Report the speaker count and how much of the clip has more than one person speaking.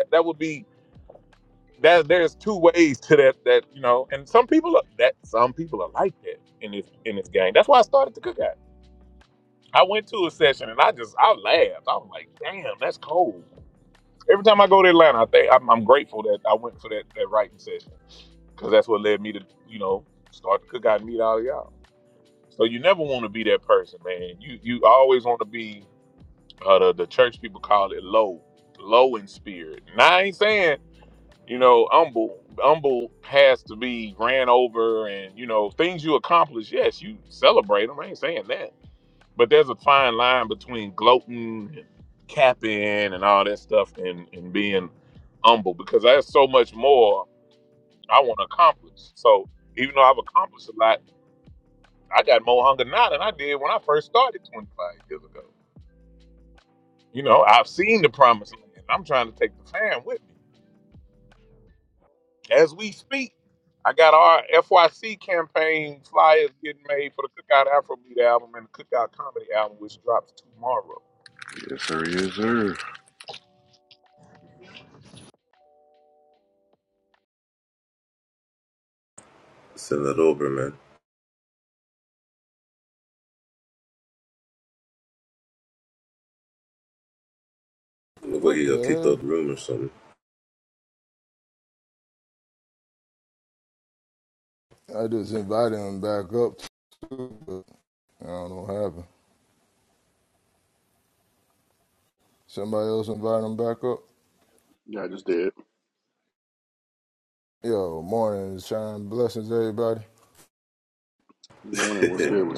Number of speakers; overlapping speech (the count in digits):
5, about 1%